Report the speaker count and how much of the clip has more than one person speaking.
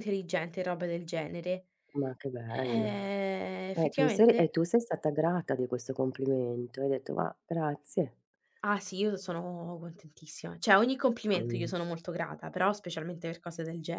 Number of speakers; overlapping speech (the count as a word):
two, about 11%